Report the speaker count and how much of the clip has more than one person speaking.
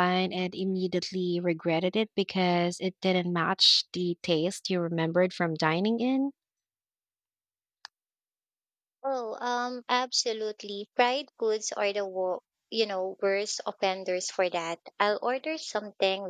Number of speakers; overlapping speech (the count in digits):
2, no overlap